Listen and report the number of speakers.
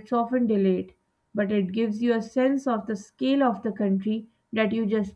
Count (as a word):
one